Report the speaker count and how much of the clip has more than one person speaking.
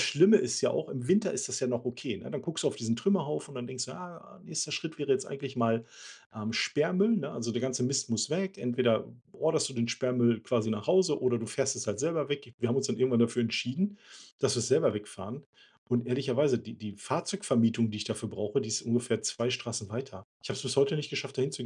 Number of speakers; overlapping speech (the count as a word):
one, no overlap